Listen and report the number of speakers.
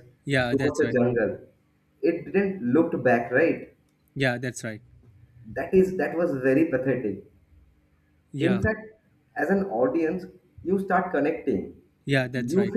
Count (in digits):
2